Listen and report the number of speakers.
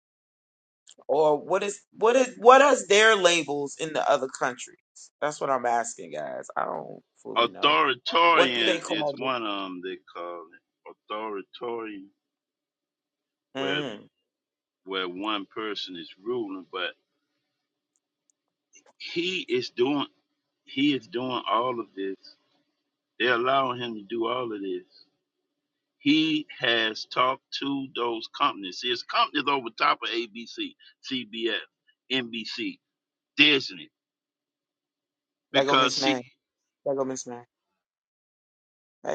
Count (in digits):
2